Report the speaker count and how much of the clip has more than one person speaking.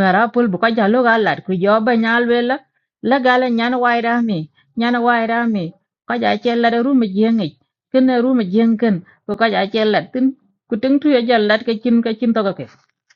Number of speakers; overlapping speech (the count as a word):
one, no overlap